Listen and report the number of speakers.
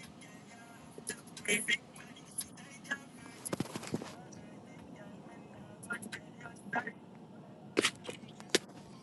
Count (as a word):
zero